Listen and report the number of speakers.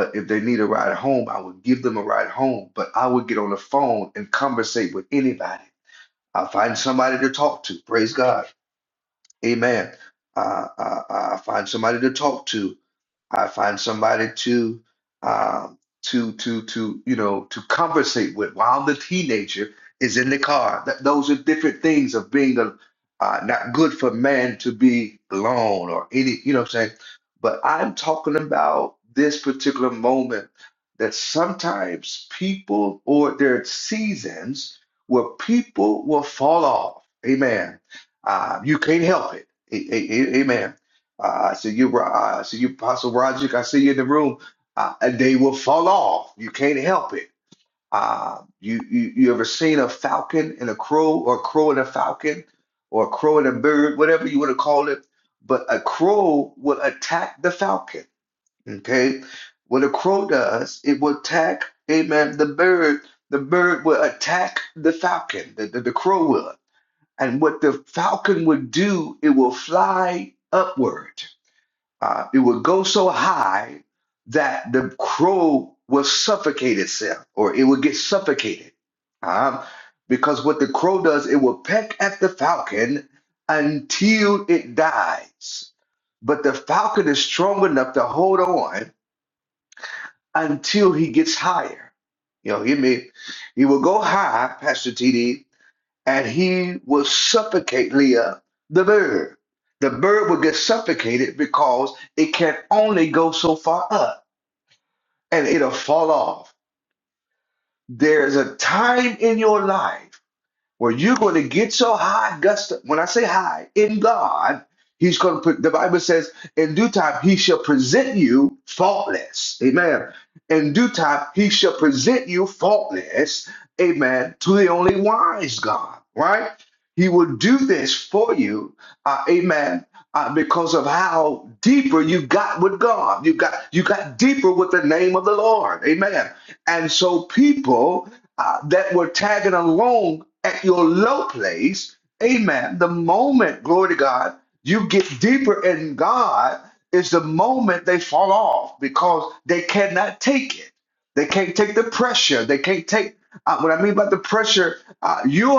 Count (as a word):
one